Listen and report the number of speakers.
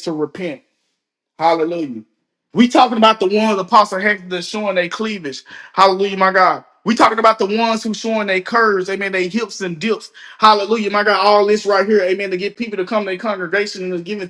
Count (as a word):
one